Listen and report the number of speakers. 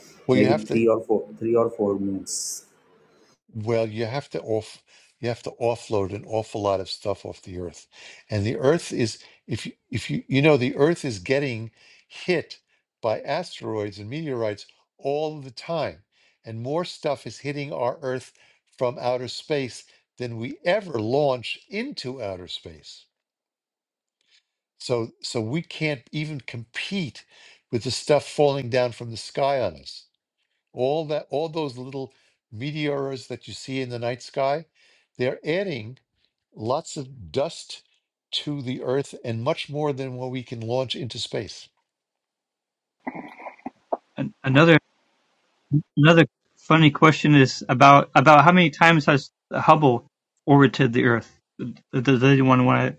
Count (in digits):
3